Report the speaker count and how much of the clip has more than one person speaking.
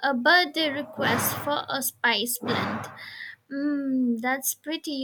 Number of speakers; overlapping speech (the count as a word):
one, no overlap